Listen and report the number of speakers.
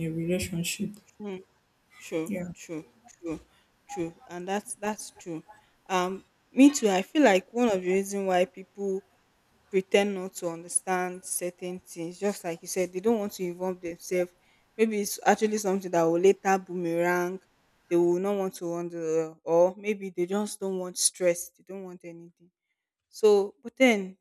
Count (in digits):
2